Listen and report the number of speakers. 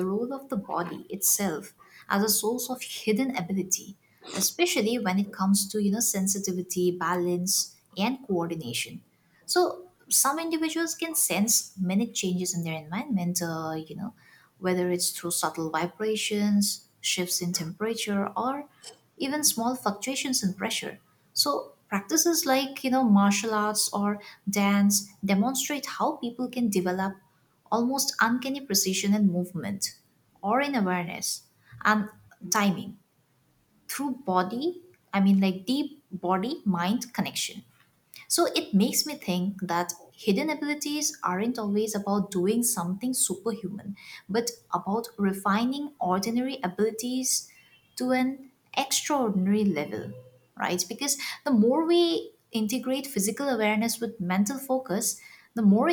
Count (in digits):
1